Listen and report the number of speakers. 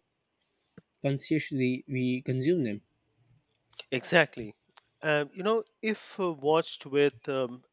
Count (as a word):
two